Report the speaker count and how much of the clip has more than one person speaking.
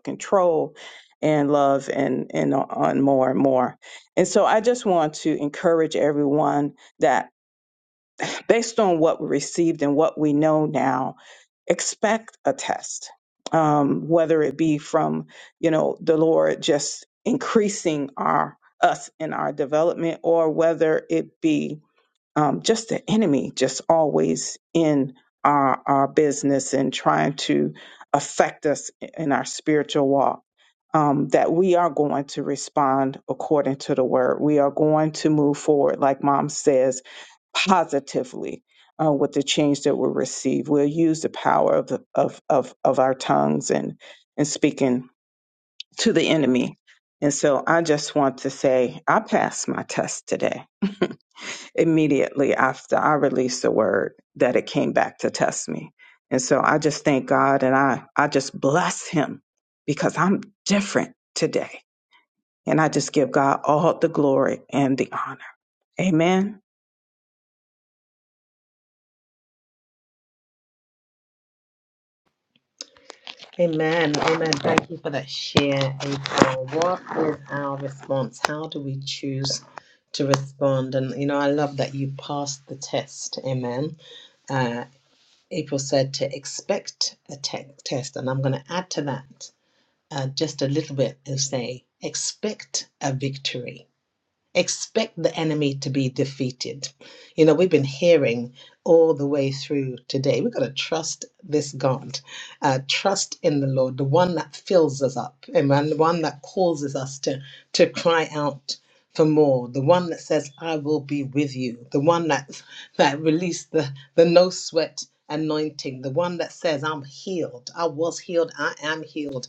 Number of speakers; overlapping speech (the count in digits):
2, no overlap